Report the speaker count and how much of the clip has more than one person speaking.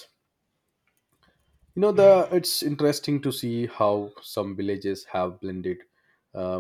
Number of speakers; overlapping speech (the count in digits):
1, no overlap